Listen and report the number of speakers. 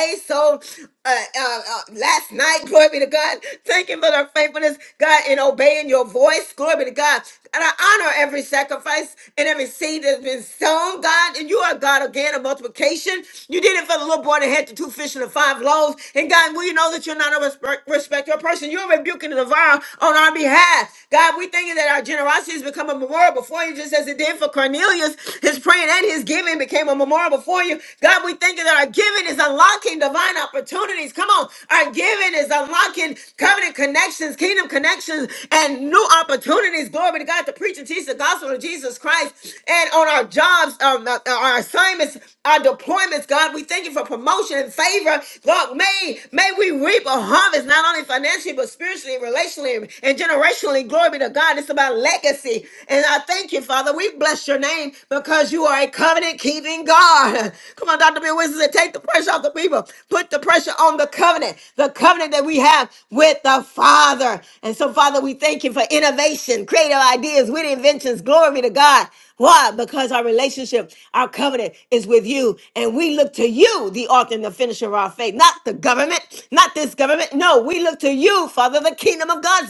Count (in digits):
1